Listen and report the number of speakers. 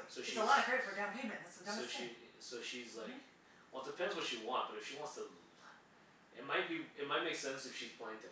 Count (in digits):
2